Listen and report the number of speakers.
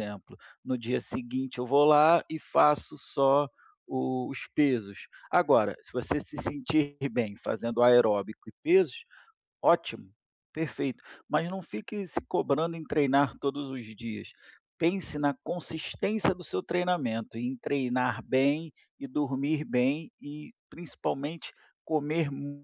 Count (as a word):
one